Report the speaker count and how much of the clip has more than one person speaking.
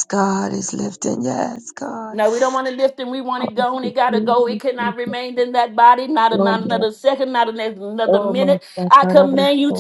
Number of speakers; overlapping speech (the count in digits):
2, about 23%